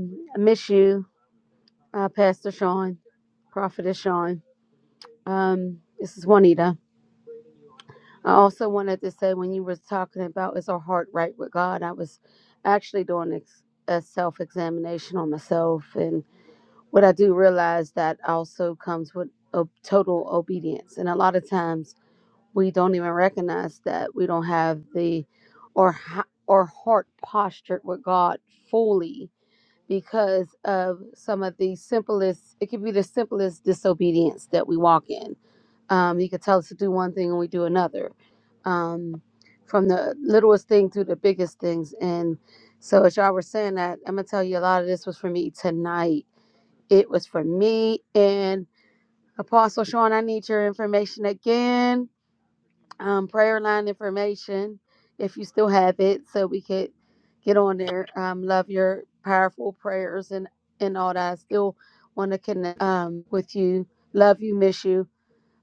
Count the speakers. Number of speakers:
1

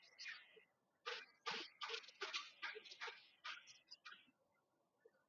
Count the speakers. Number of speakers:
0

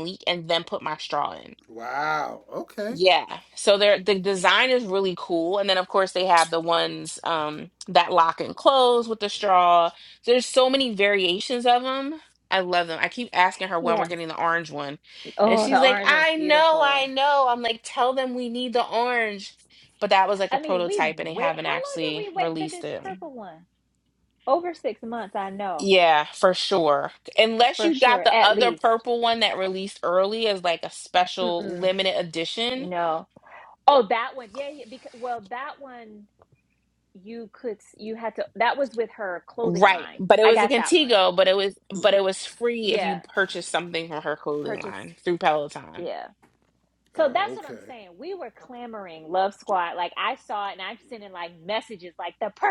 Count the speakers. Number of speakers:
3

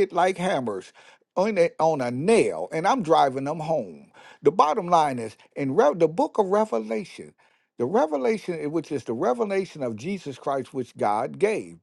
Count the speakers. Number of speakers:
1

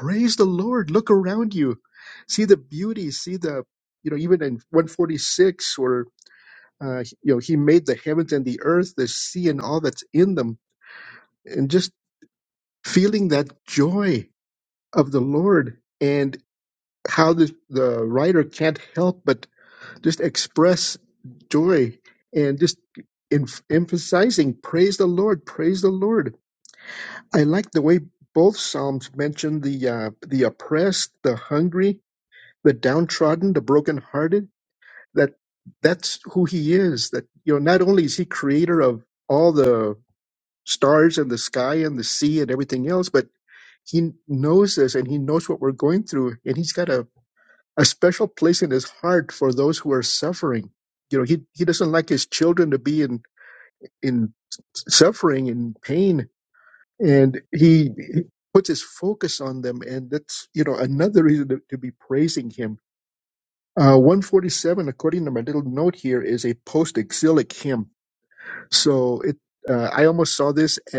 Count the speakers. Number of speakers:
1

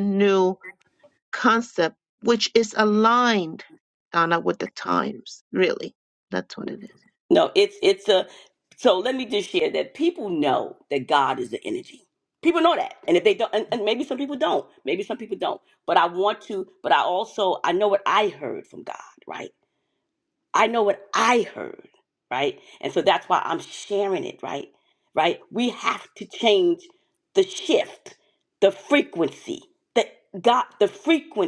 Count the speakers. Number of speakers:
2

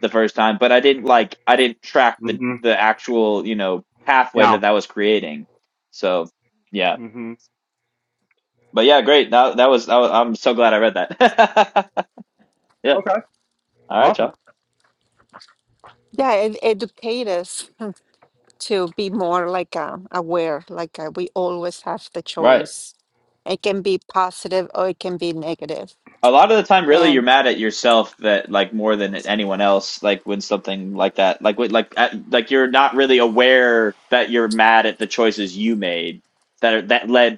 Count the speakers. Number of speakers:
3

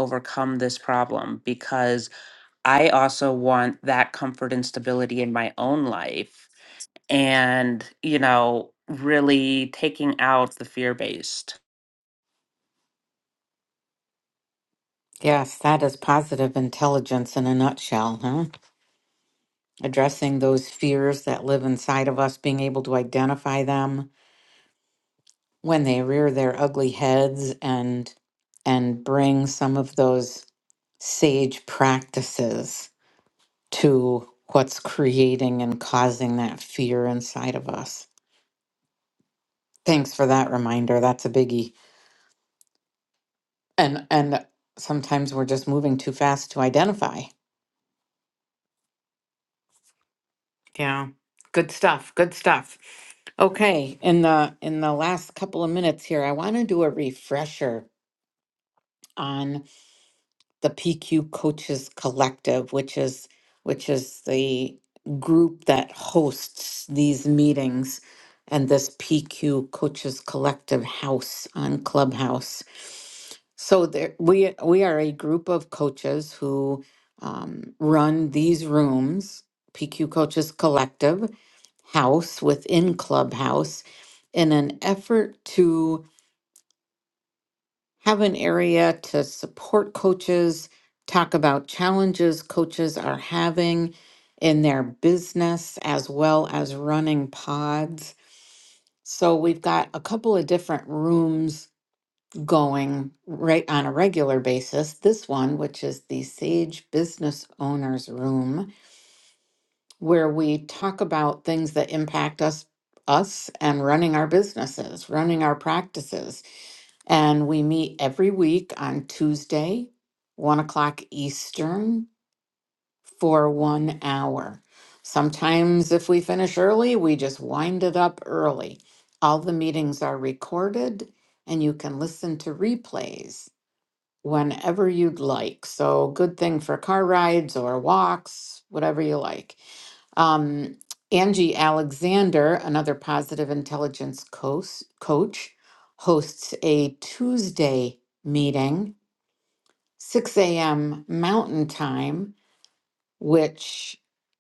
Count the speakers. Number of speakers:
2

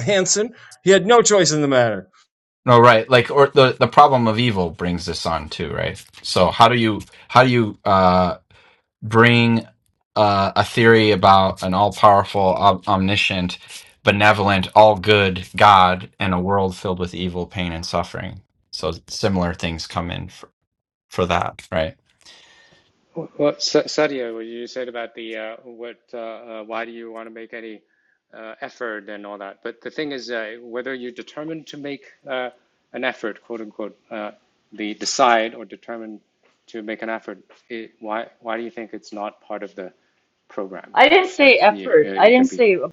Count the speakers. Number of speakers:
4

